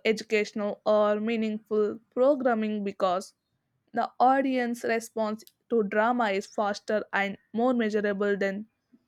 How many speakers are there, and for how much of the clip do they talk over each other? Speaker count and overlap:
1, no overlap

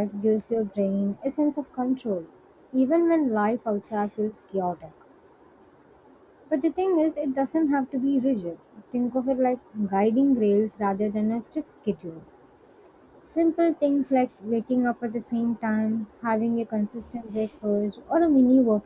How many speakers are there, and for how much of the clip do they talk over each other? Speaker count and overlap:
1, no overlap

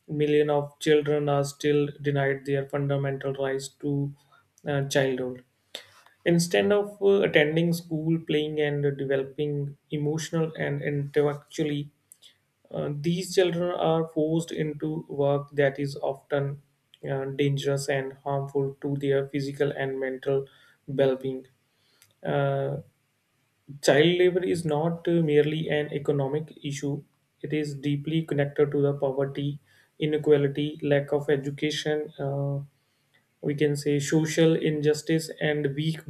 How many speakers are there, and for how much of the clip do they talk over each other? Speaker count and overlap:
1, no overlap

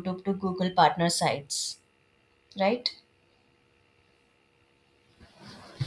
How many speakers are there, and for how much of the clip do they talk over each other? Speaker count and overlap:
1, no overlap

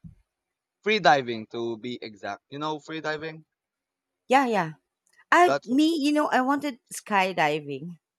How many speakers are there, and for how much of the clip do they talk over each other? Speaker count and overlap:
2, about 3%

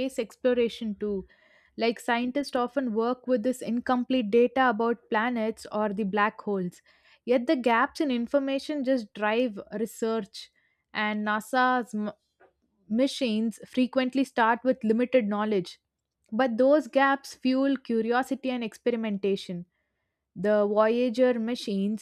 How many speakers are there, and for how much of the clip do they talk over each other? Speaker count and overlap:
1, no overlap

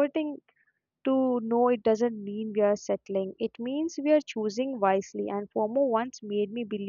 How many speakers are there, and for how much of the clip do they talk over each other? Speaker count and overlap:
1, no overlap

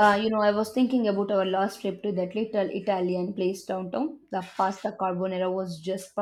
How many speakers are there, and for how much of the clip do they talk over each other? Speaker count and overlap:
1, no overlap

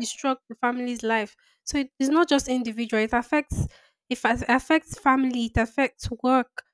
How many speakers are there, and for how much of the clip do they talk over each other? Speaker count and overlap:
1, no overlap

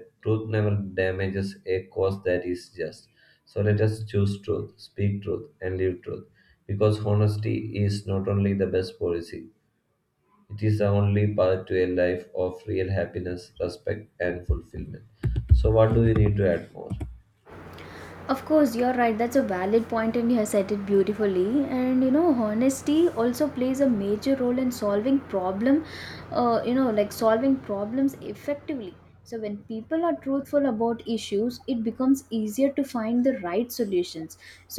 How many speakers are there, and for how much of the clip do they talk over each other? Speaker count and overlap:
2, no overlap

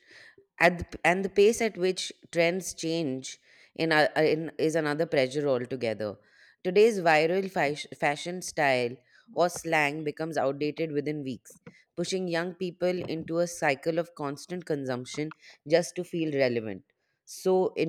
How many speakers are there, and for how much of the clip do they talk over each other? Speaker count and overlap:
1, no overlap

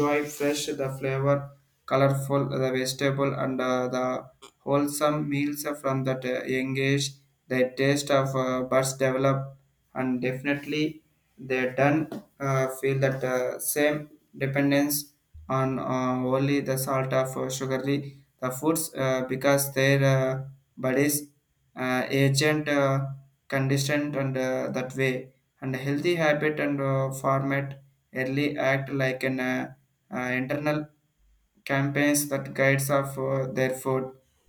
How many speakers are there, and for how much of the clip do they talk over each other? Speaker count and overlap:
1, no overlap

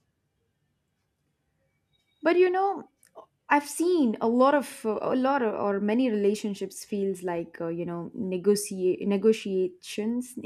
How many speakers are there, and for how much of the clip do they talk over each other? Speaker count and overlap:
1, no overlap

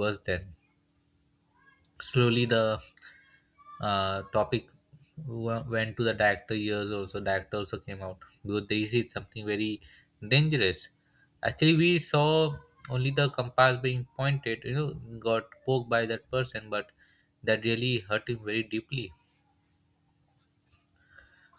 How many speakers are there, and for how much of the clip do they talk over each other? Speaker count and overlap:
1, no overlap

